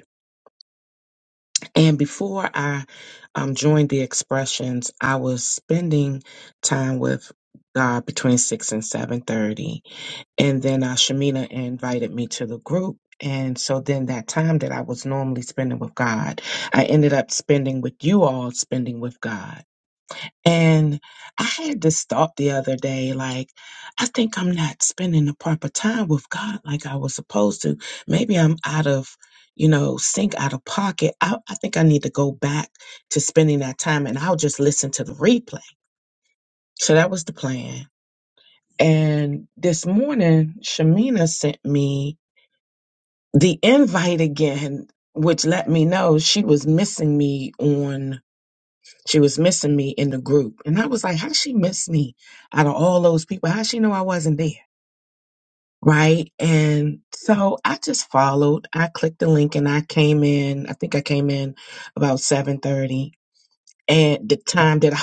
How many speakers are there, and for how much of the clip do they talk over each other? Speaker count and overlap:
one, no overlap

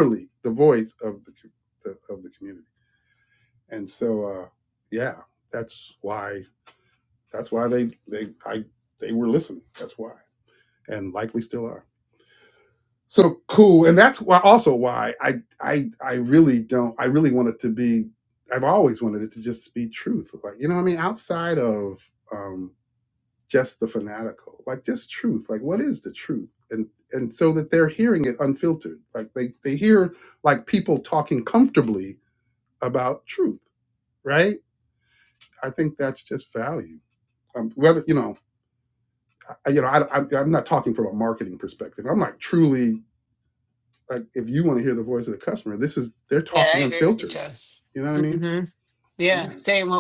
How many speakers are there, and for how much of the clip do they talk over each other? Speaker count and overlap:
two, about 2%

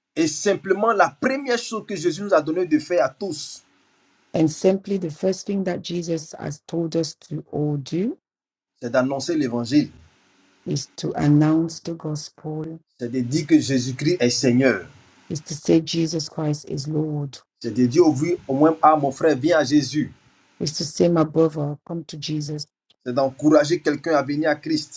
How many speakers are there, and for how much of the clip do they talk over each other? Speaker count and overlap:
two, no overlap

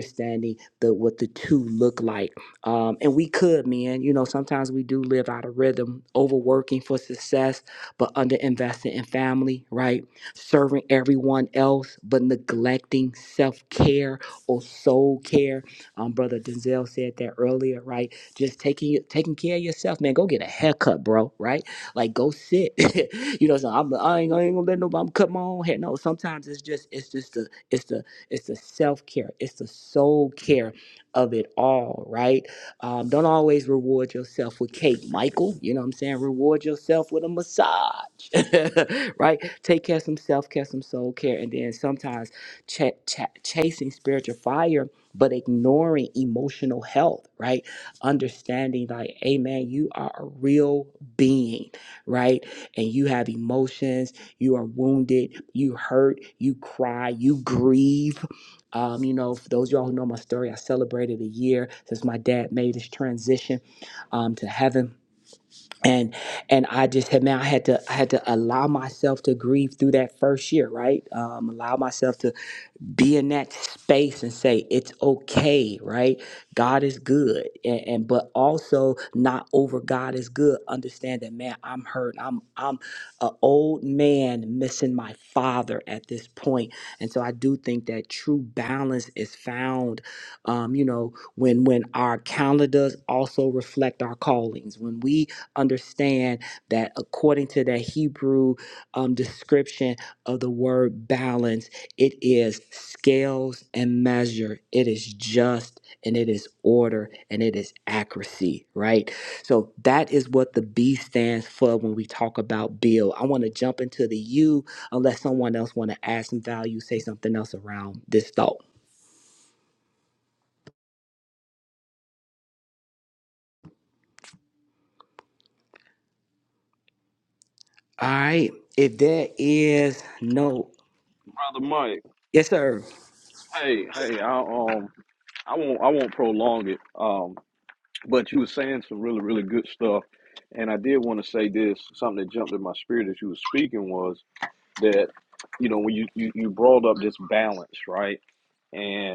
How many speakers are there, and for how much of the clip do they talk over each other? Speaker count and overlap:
two, no overlap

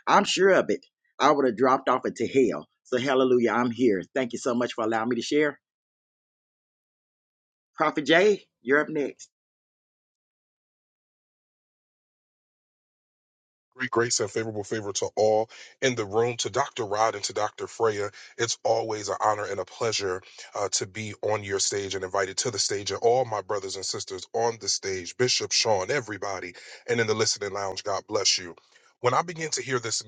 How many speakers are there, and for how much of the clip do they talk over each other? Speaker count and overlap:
two, no overlap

